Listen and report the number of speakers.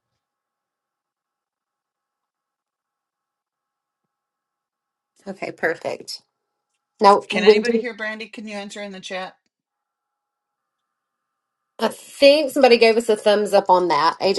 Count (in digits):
2